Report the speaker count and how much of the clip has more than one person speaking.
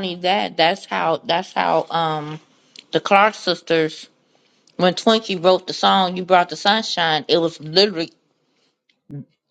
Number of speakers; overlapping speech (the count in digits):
1, no overlap